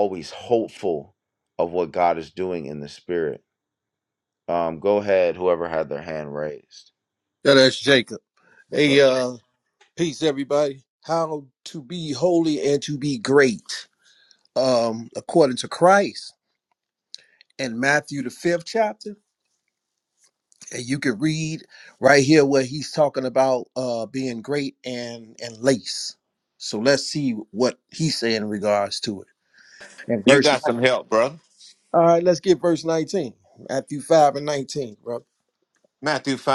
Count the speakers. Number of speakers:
3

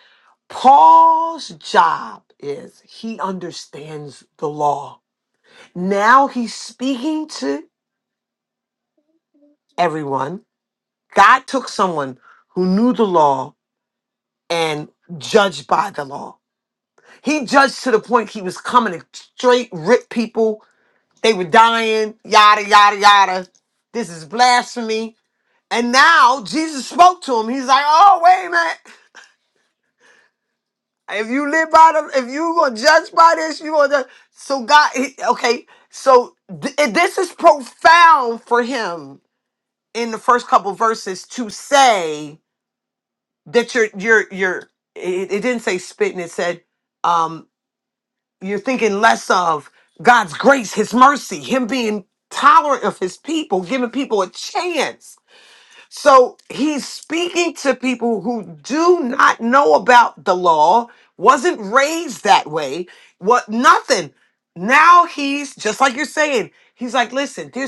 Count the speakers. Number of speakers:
1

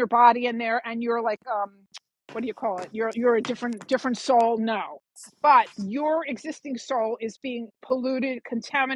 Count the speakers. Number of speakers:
1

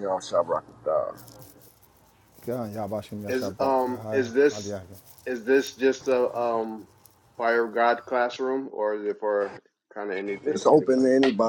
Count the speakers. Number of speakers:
3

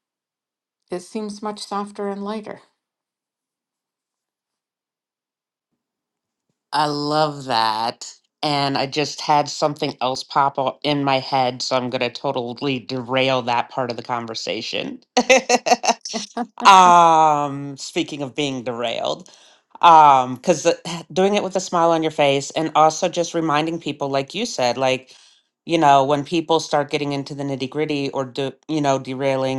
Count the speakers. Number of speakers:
2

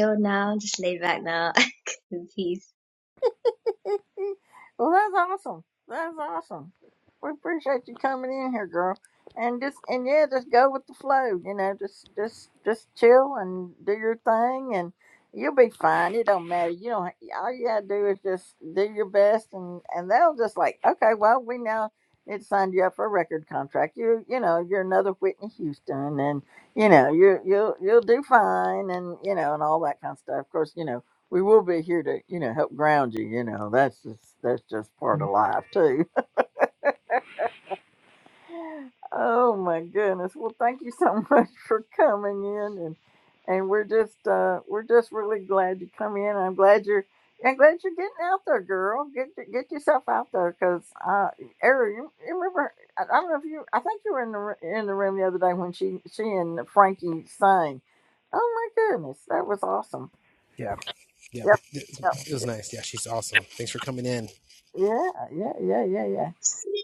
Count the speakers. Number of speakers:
3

